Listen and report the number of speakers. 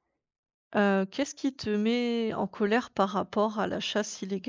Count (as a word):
one